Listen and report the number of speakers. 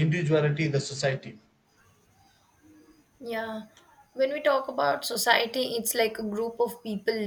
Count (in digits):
2